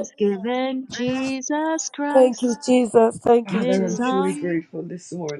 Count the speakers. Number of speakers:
three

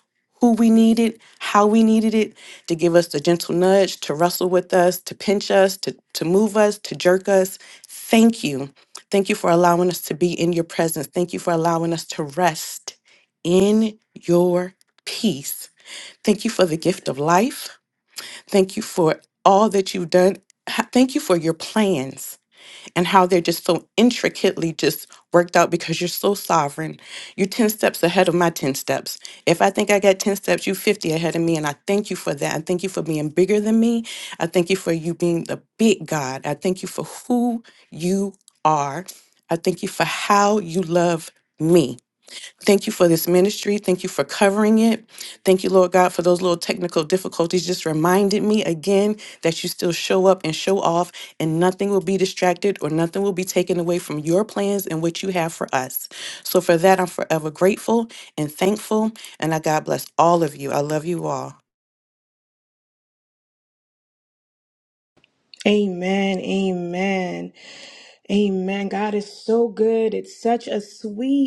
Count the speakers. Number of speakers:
two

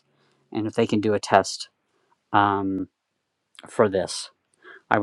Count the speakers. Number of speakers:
one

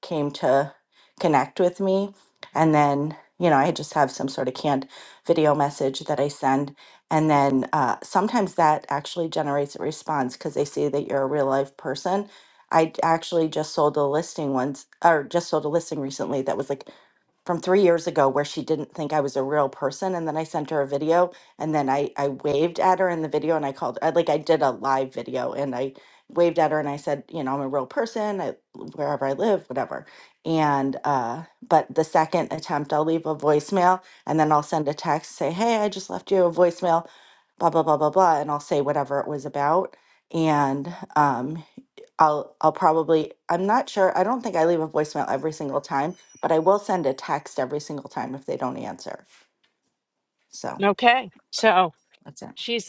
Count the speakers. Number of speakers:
two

